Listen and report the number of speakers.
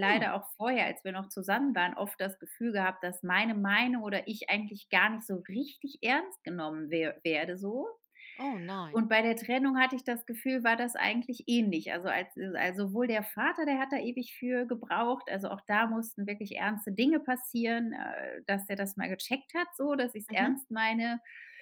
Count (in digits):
2